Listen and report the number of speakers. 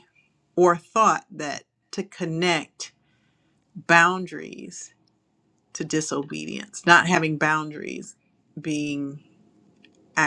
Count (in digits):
1